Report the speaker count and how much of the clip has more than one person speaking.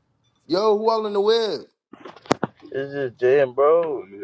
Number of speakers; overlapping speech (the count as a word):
two, no overlap